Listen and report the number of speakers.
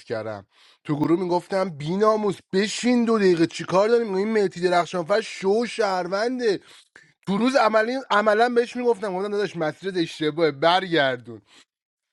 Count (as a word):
one